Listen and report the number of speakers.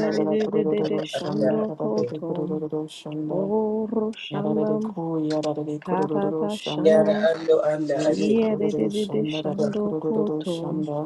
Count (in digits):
3